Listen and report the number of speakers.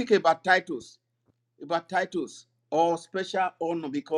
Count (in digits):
1